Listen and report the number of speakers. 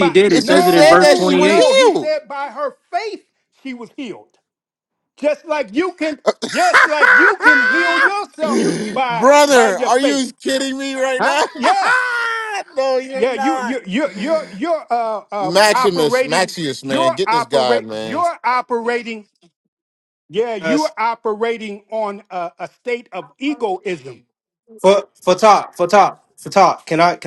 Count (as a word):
three